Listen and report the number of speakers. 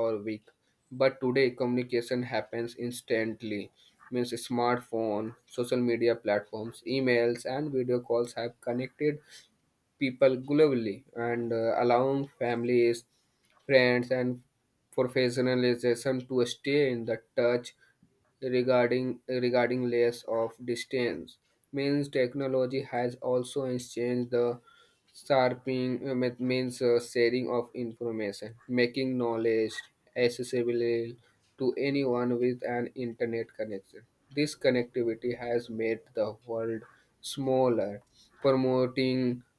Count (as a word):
one